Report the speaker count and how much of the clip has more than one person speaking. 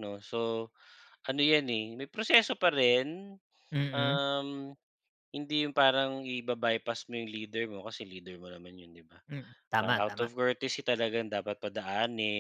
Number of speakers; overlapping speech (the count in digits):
2, about 6%